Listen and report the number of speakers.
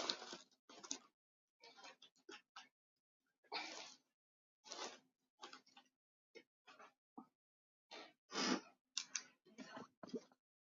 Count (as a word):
zero